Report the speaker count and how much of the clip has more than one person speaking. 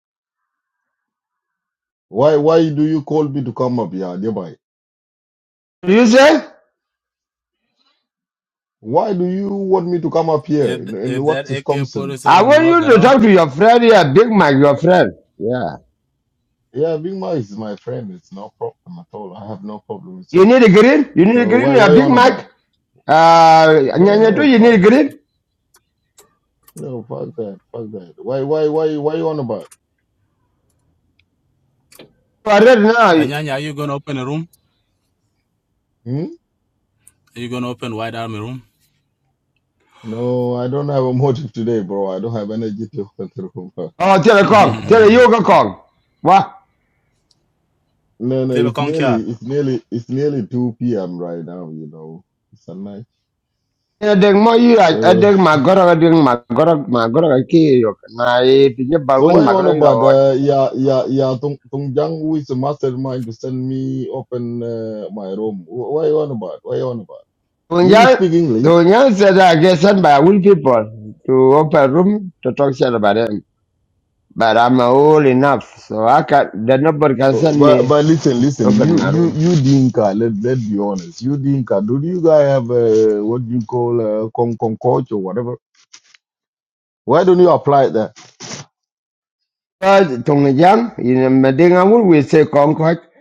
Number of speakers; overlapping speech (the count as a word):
three, about 9%